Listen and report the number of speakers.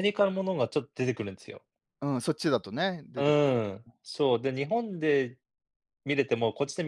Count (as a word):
two